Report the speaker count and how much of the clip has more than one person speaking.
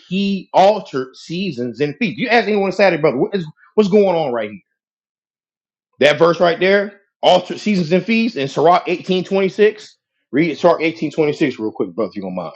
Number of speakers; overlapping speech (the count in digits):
1, no overlap